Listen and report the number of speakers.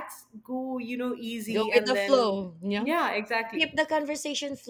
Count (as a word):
two